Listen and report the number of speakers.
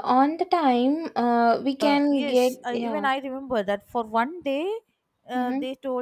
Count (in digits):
2